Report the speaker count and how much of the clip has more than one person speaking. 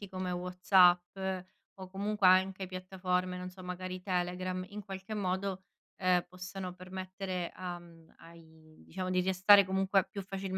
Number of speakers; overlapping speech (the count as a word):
one, no overlap